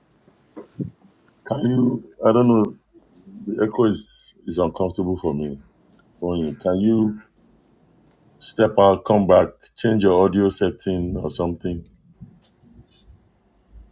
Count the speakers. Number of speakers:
one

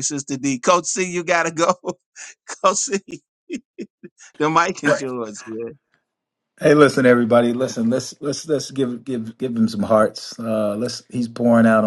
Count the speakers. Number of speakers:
two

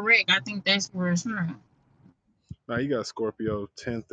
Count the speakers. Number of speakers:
two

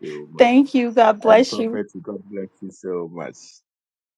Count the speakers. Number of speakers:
two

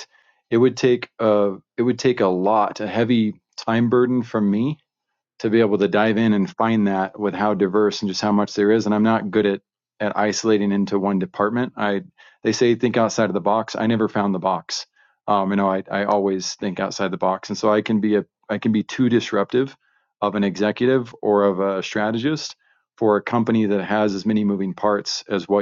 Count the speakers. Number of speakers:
one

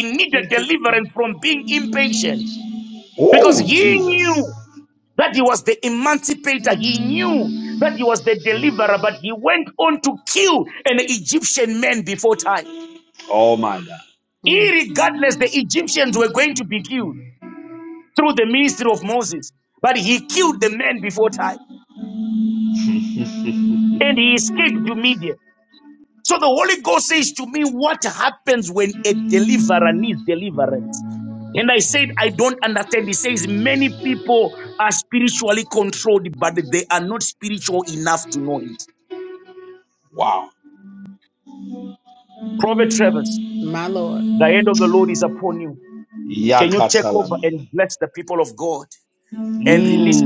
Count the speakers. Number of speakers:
three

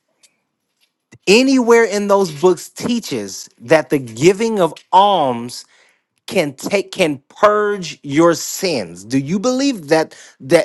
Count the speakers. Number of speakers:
one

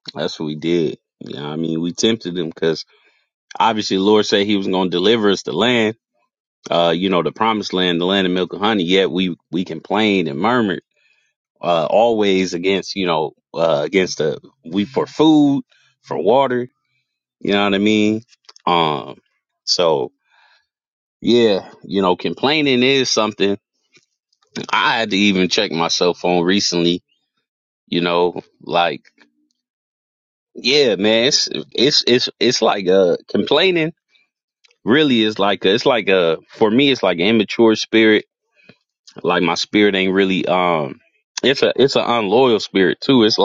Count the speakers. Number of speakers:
one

